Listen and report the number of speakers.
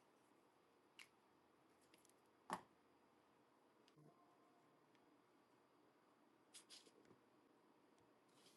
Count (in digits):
0